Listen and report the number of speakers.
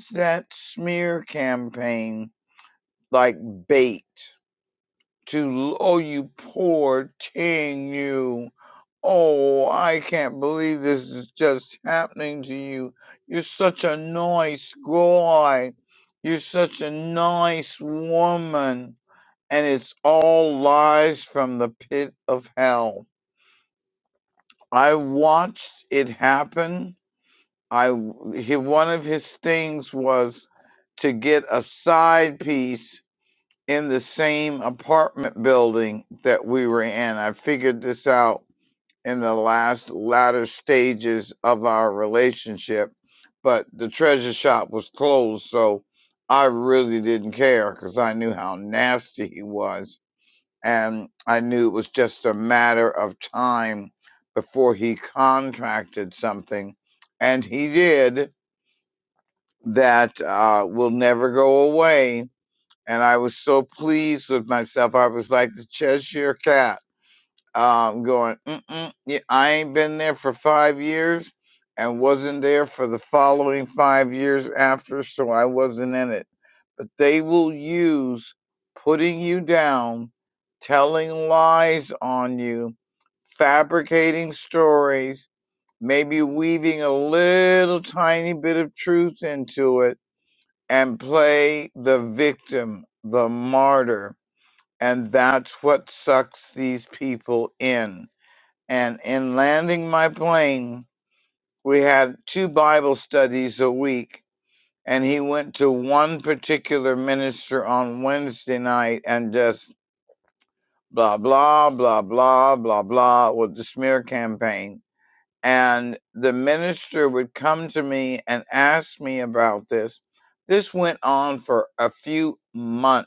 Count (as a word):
one